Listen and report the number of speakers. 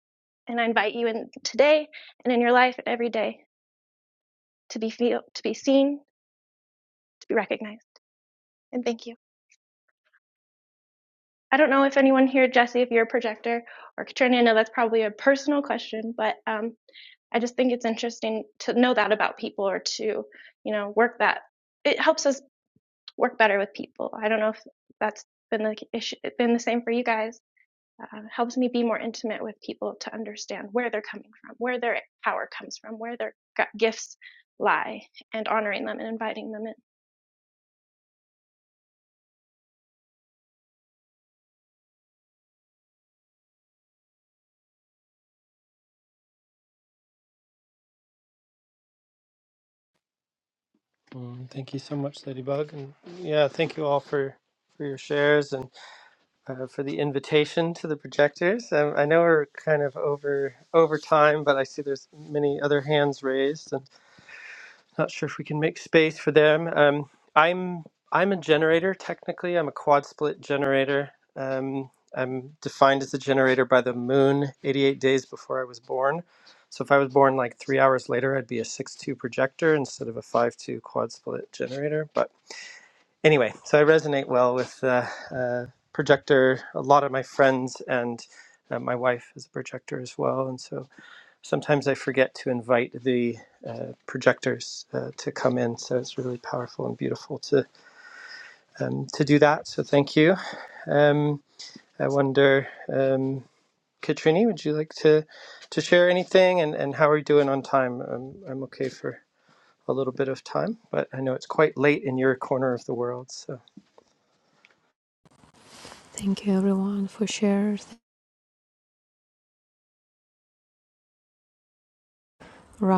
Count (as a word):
three